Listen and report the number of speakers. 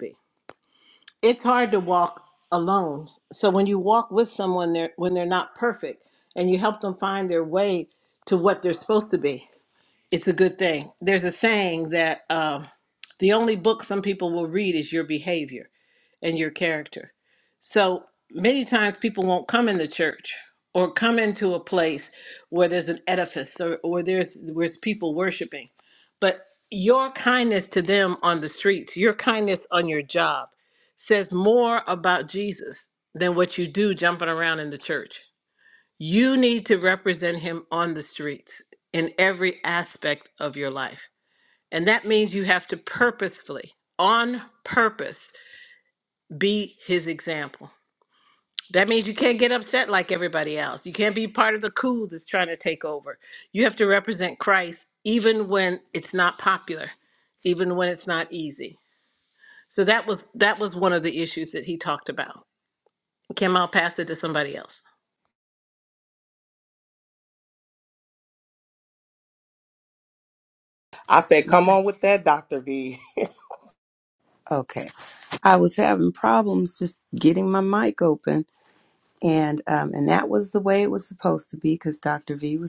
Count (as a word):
three